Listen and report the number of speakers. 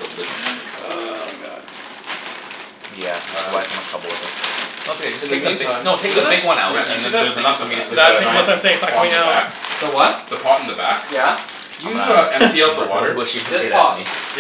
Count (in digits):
4